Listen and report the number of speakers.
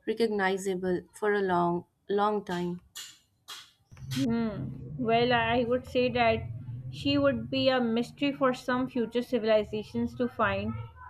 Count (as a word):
two